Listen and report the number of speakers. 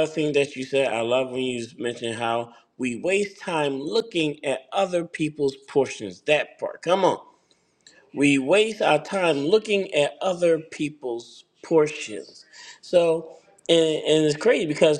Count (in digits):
1